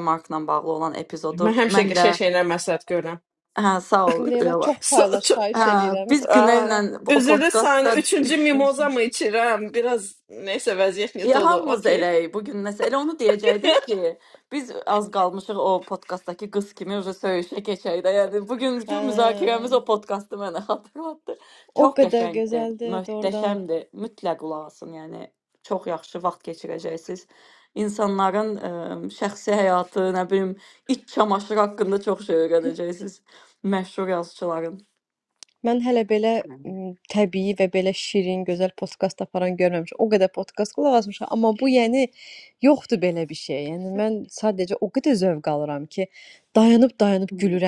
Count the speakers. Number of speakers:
three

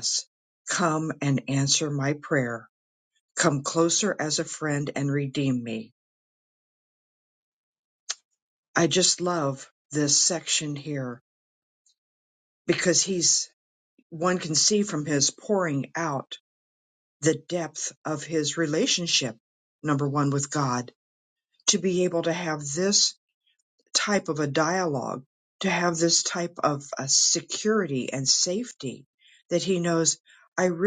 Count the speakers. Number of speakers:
one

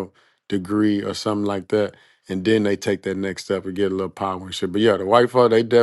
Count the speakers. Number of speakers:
one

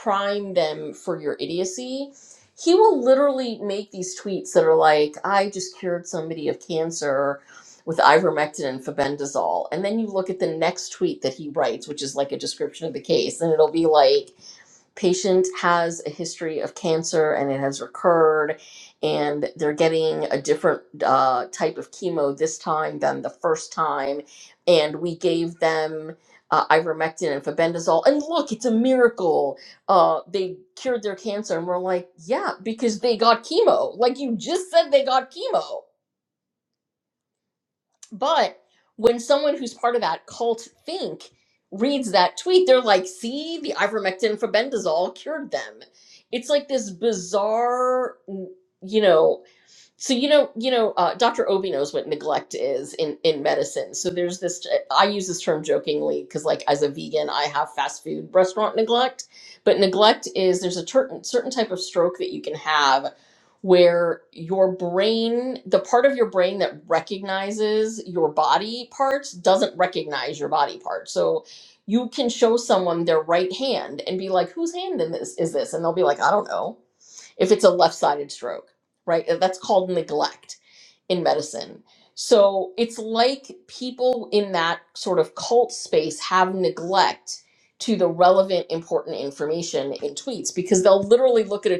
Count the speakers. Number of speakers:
one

